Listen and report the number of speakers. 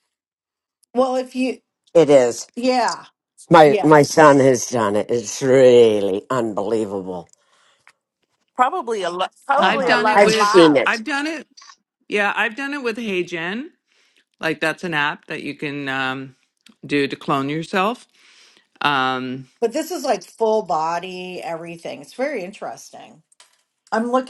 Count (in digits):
4